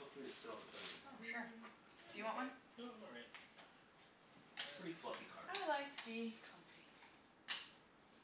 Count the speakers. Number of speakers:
three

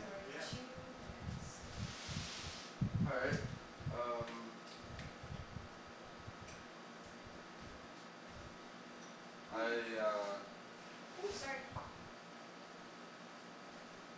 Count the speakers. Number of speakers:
two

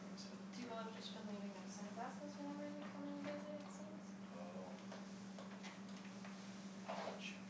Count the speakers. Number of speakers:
two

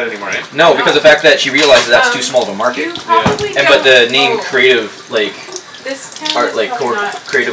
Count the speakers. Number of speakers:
three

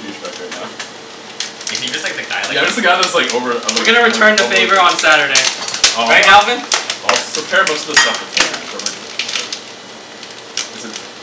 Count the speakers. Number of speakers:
three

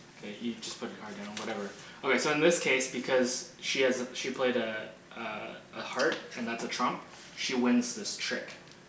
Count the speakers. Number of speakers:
one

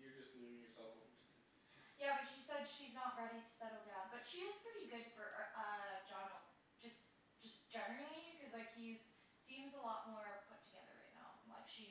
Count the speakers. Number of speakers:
two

